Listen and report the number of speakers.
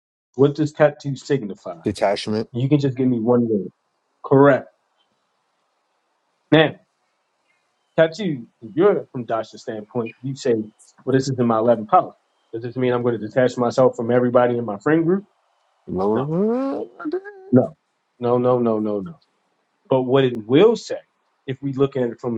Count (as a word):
two